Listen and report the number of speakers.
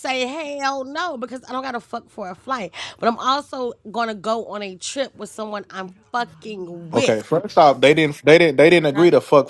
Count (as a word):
two